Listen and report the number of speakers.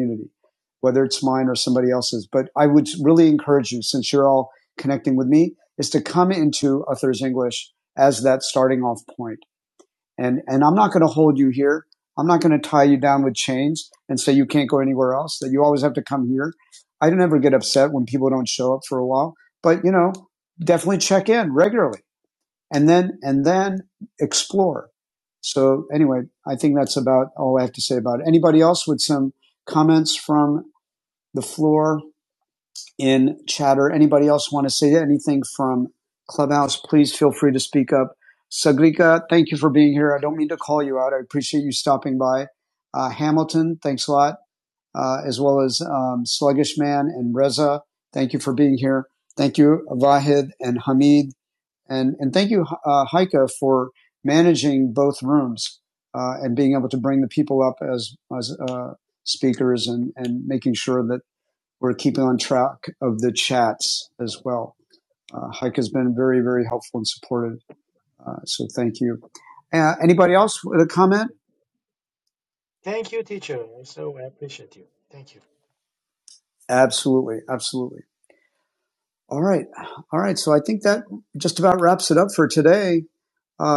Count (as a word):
two